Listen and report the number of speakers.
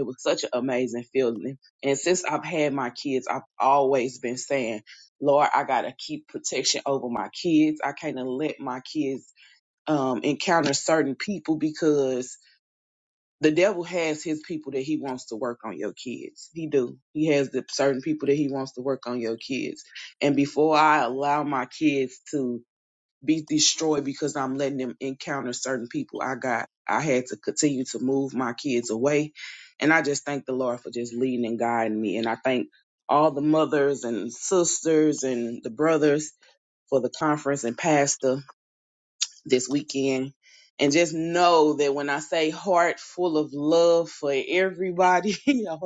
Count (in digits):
1